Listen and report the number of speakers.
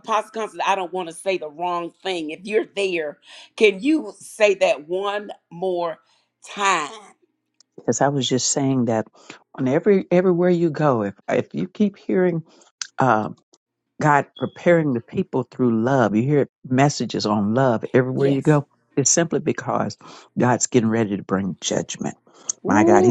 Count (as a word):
two